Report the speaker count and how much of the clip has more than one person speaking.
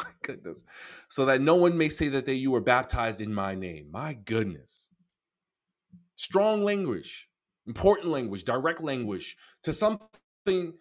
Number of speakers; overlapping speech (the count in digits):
1, no overlap